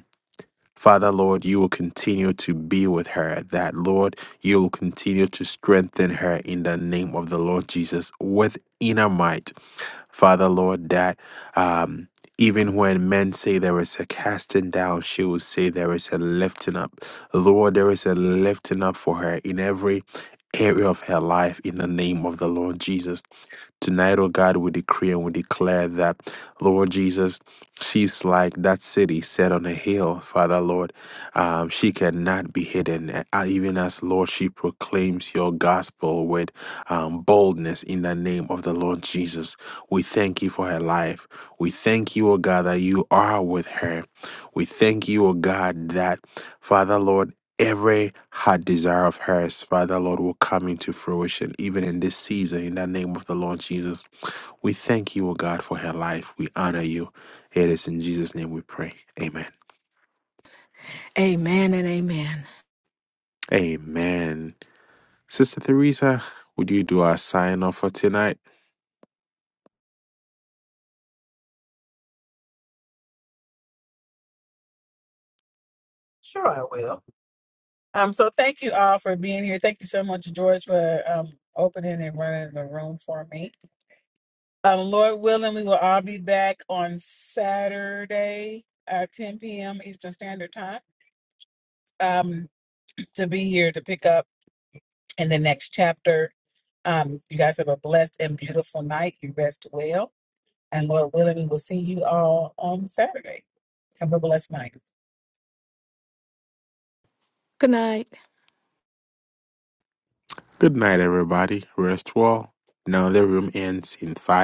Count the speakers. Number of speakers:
3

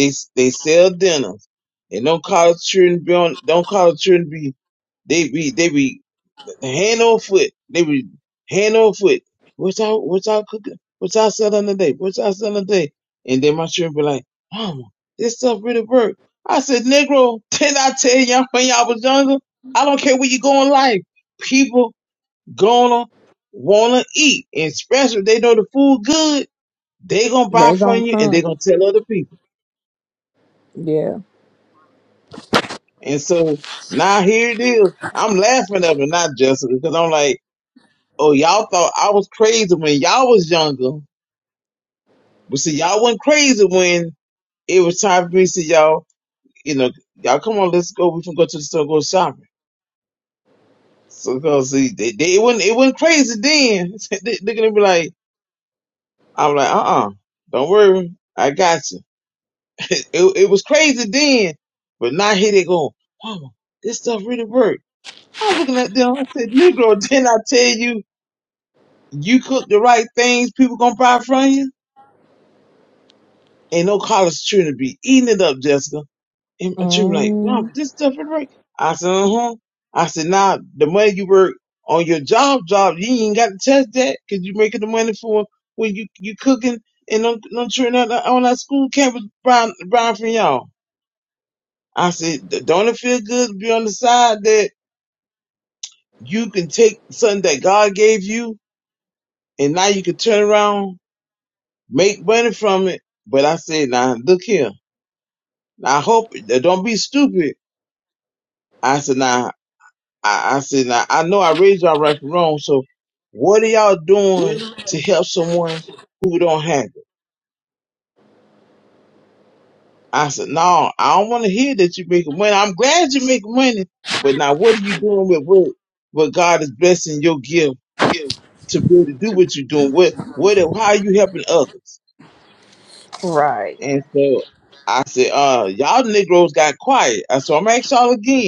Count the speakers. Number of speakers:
2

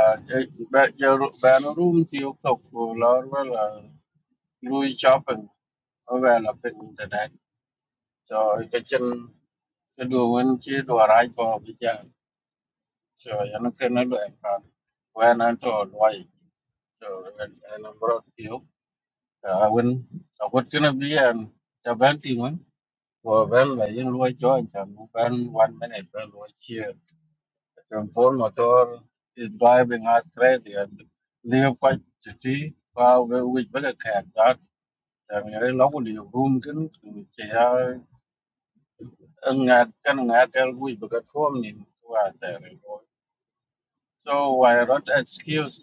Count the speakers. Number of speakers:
1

